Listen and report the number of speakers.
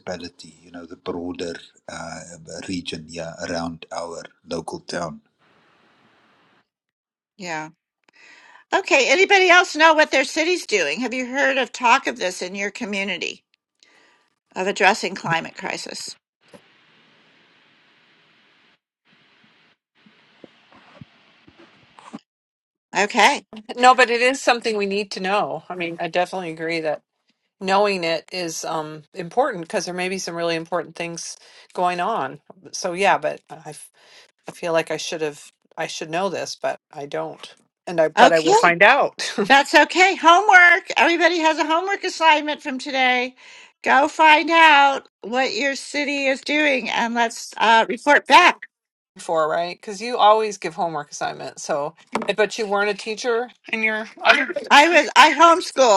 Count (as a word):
three